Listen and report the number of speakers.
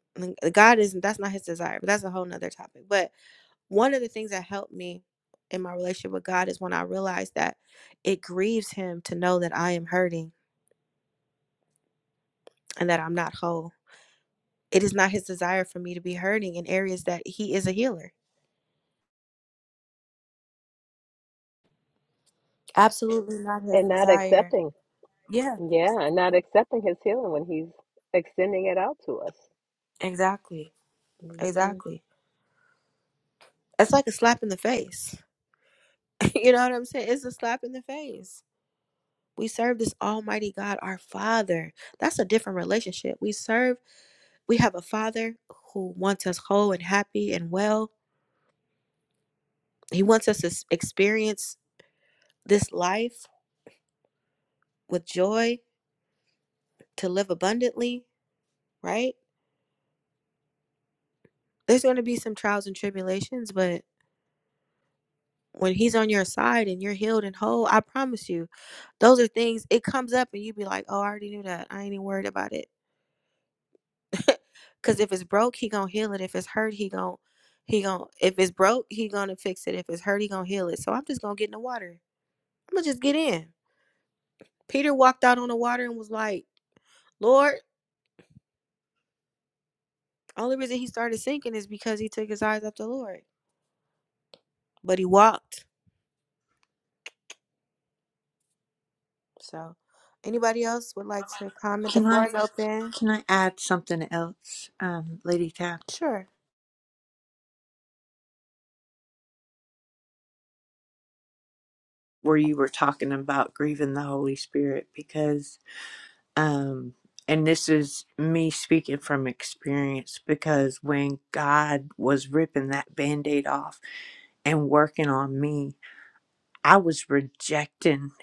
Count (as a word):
three